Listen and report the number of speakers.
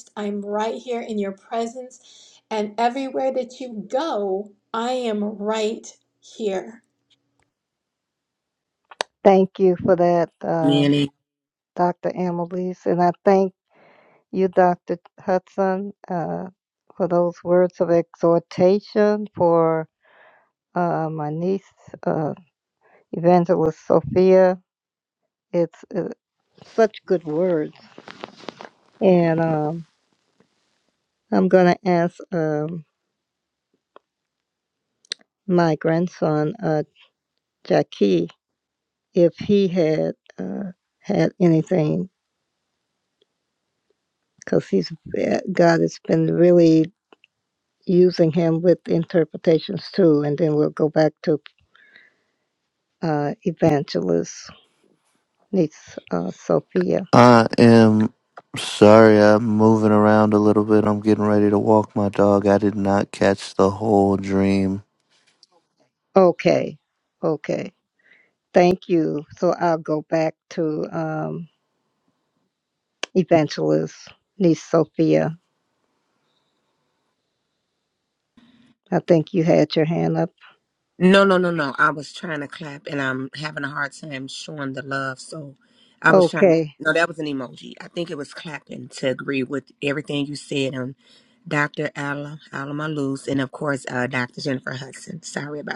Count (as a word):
four